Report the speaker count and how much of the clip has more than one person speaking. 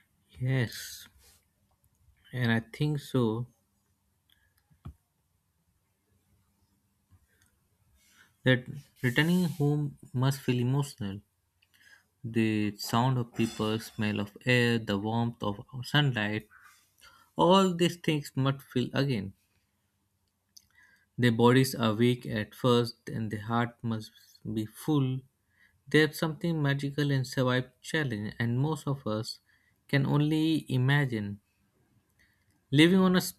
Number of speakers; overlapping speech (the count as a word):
one, no overlap